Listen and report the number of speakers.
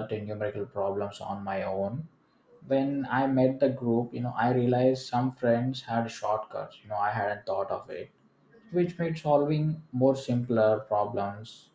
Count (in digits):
1